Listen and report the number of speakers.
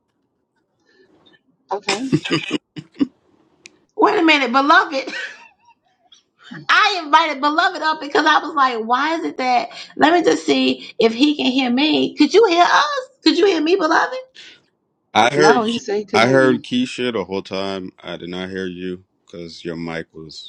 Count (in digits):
3